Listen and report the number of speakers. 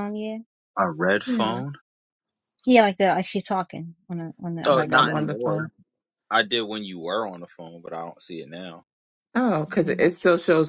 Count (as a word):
three